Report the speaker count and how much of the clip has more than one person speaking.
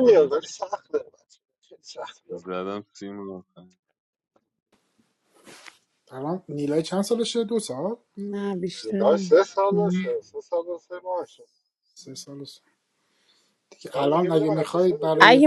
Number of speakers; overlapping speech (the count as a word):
four, about 18%